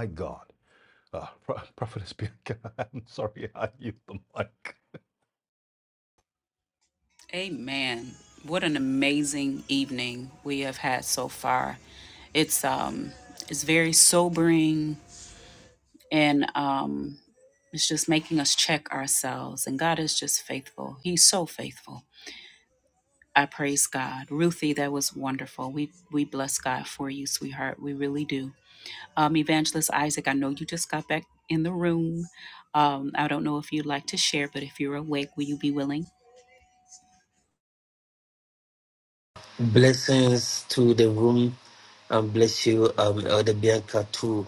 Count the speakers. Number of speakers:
three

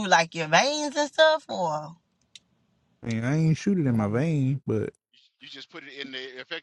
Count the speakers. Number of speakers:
three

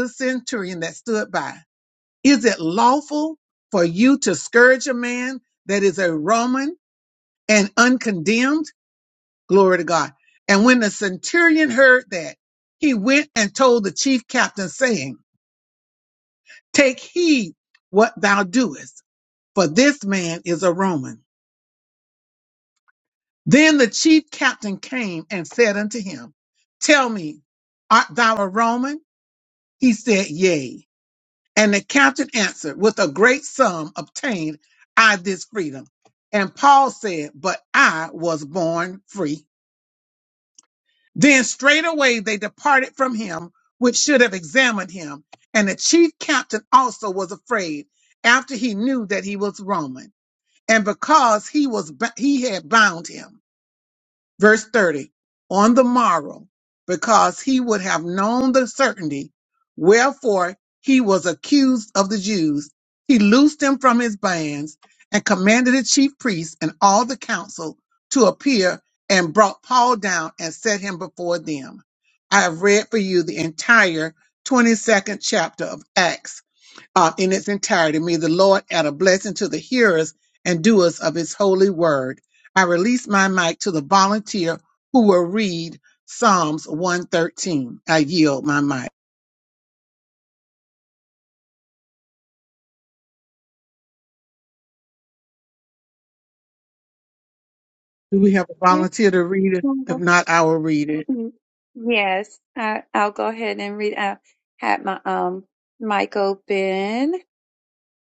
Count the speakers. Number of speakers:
two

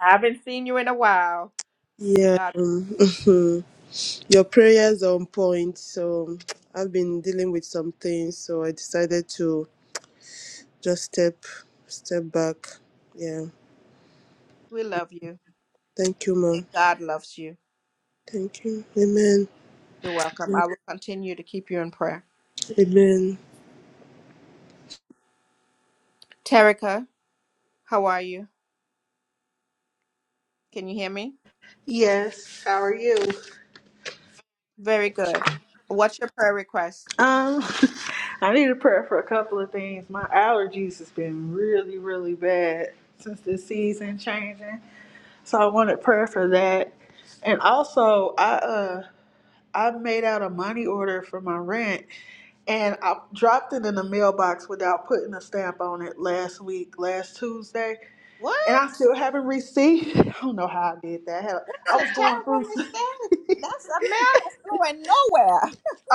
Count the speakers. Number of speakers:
three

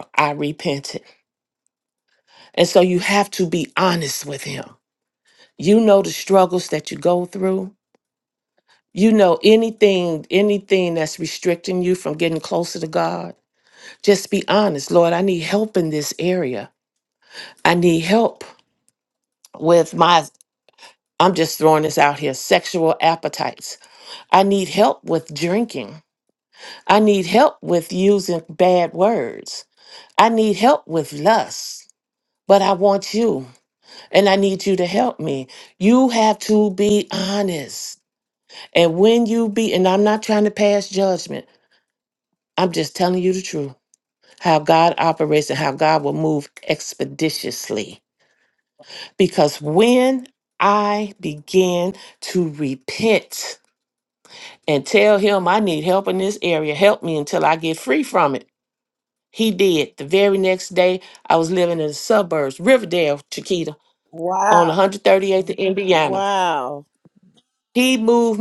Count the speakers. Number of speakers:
two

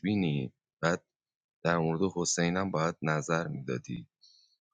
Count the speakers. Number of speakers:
one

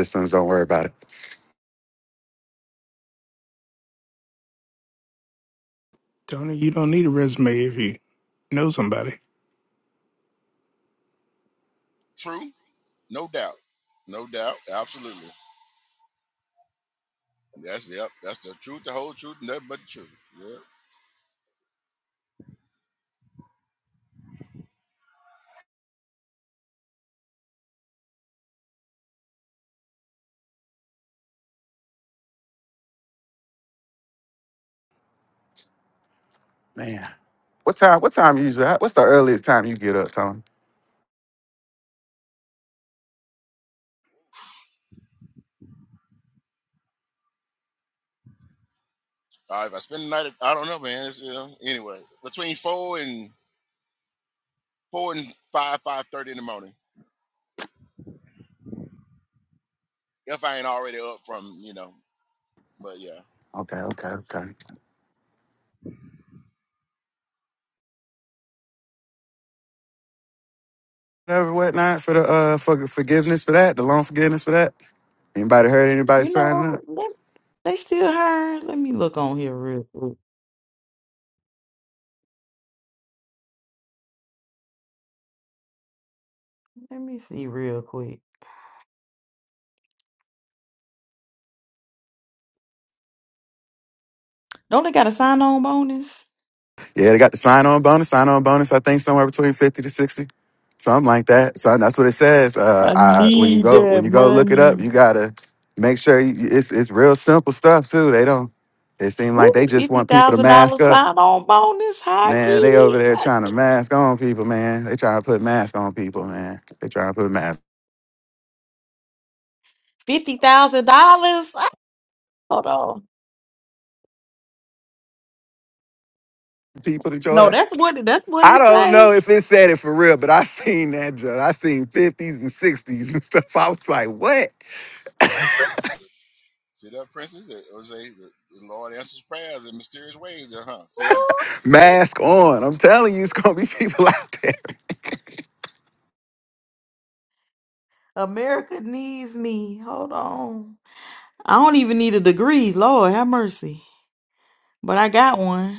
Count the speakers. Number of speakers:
four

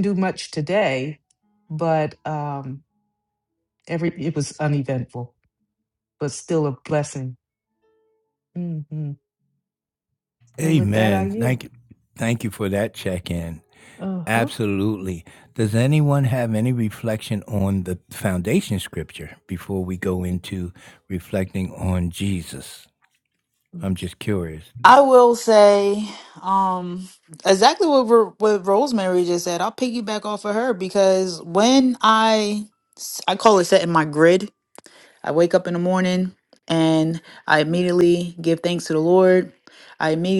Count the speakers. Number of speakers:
three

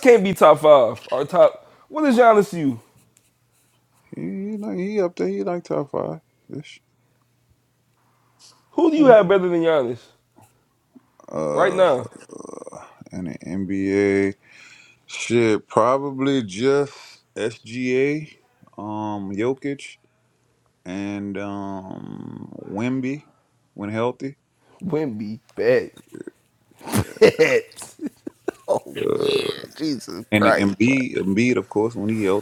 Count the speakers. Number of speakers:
two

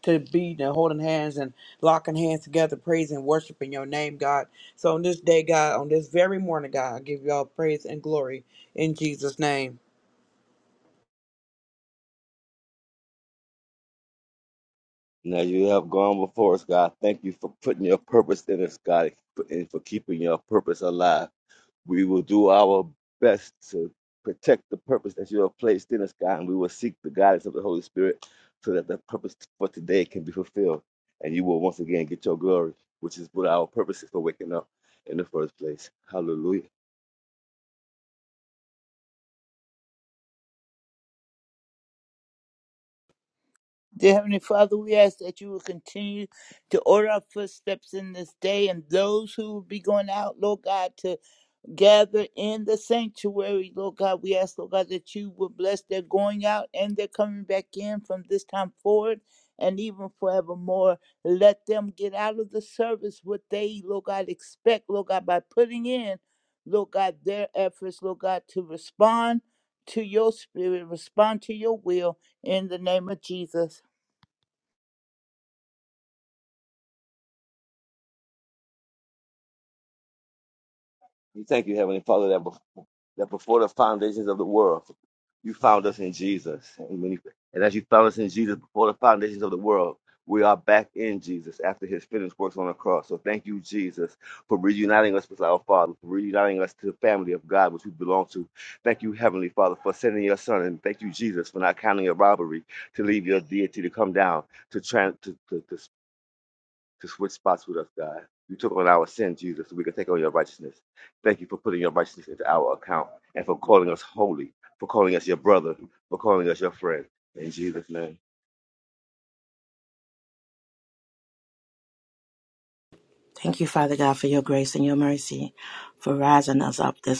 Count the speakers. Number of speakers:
four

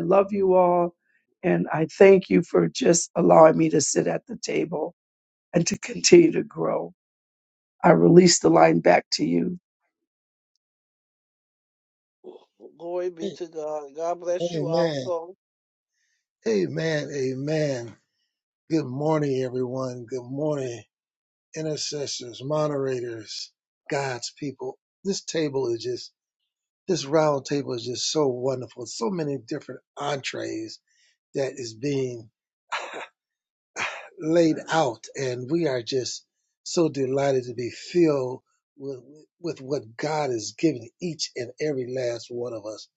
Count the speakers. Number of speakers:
three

